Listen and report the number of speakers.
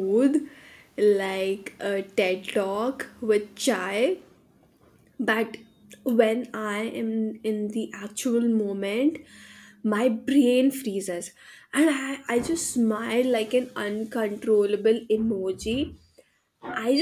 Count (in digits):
1